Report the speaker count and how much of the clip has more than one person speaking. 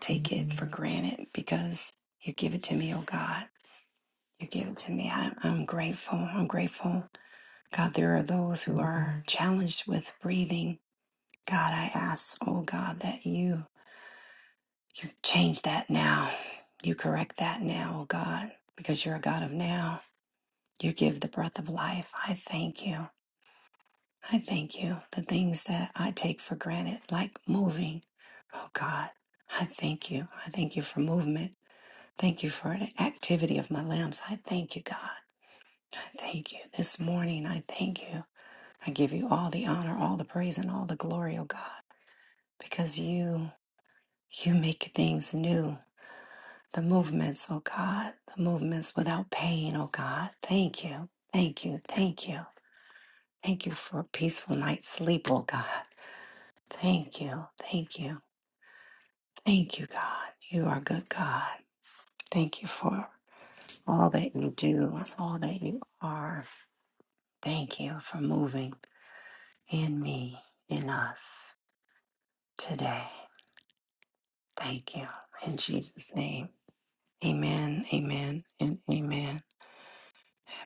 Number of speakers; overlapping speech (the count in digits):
1, no overlap